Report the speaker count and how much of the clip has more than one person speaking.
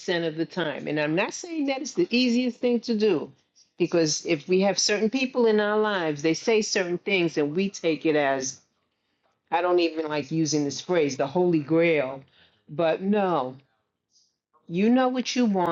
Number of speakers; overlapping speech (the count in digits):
1, no overlap